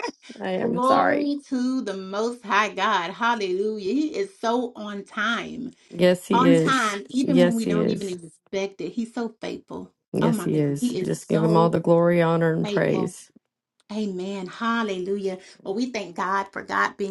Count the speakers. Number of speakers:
2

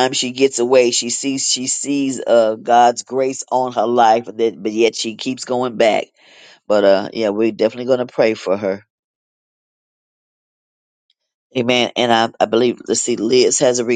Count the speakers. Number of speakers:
1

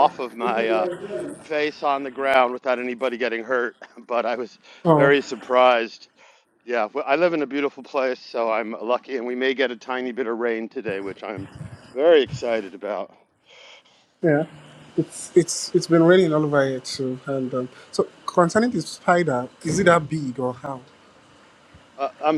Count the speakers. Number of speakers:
2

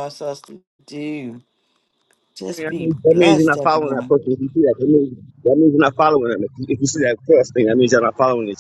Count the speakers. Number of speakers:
2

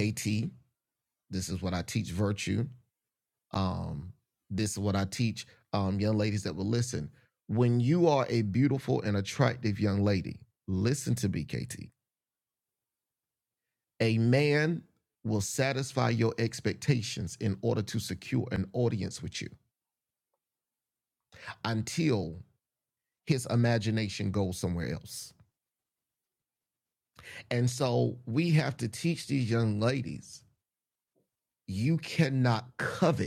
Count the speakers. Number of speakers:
1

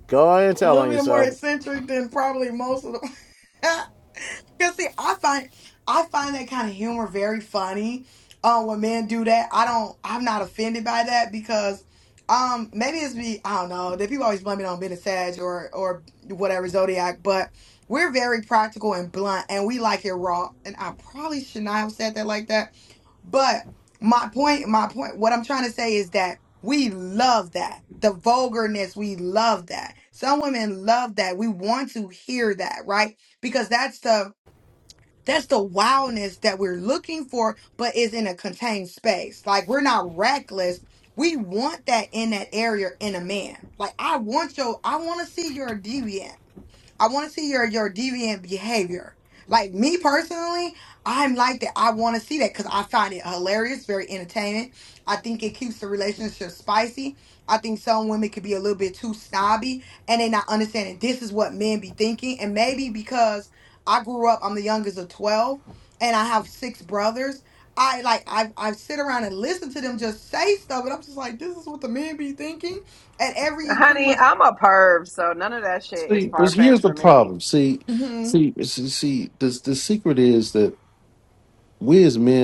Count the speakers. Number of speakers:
4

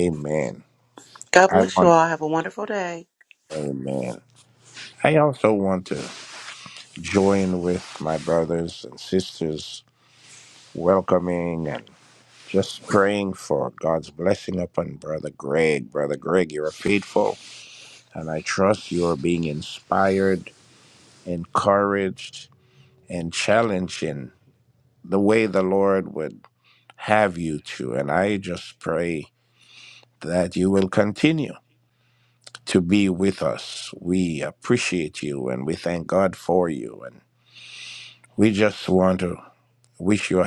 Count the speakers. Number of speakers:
2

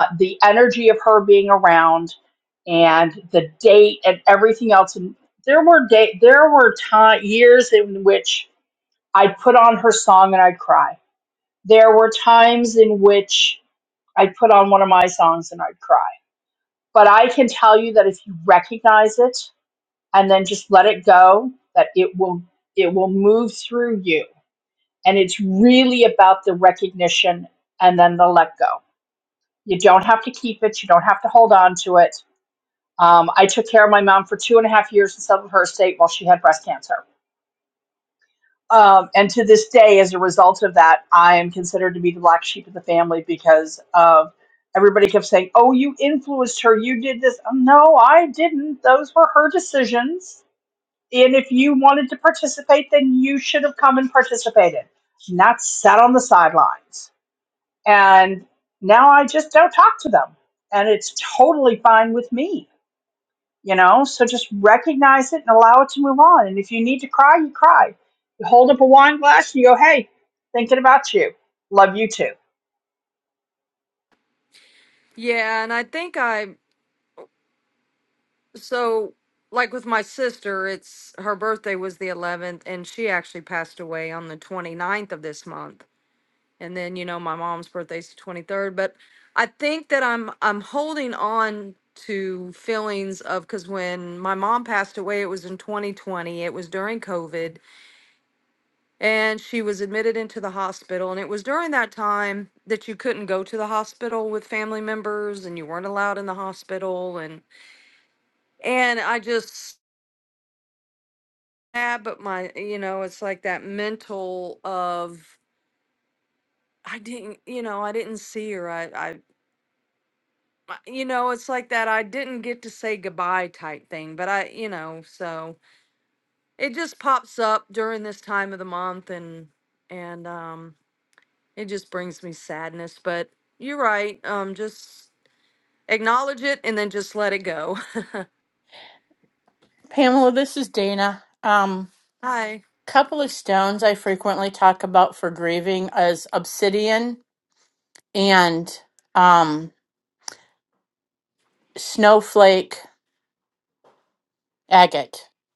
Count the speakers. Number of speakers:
3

